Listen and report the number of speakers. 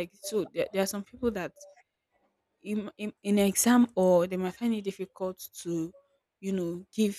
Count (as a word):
one